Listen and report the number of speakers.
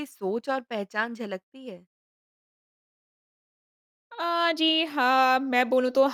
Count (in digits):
2